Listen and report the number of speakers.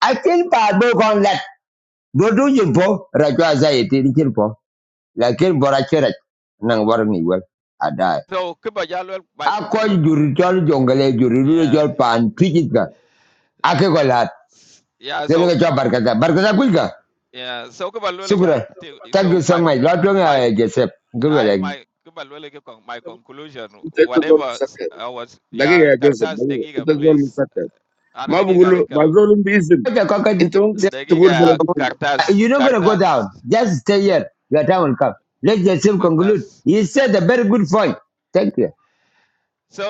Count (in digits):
3